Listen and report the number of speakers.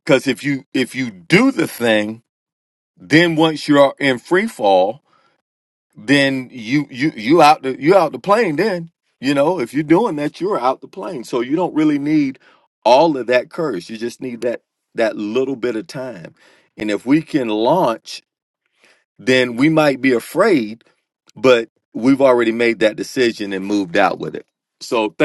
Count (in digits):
1